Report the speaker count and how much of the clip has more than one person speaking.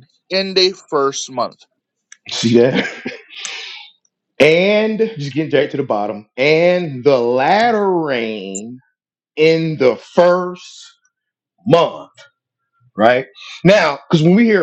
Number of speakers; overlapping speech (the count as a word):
two, no overlap